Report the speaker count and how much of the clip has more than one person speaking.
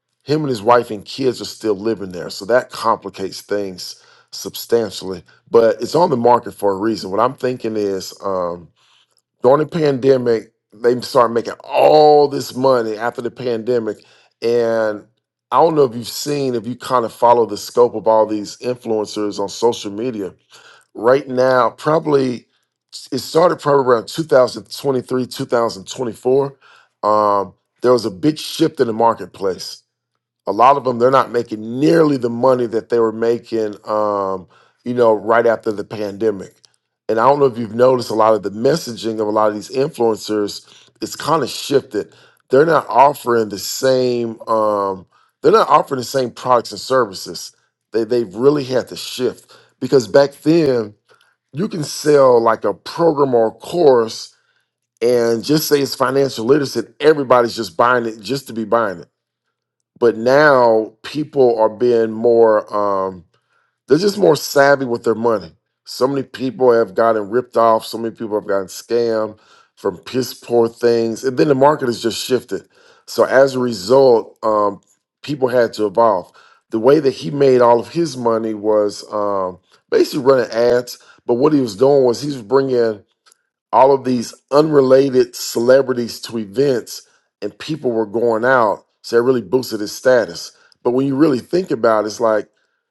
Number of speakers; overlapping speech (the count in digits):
1, no overlap